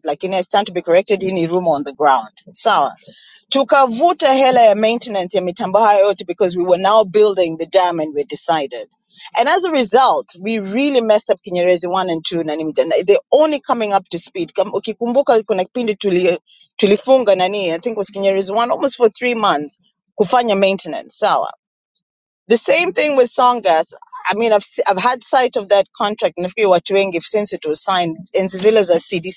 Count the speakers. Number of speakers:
1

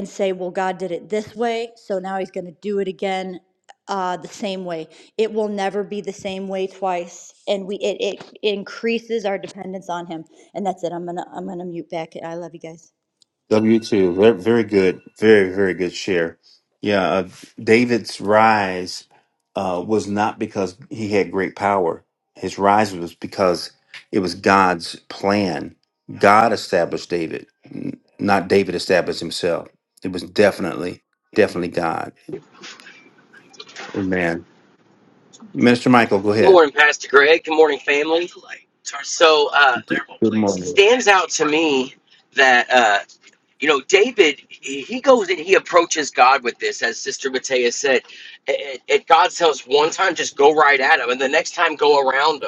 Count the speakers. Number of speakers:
3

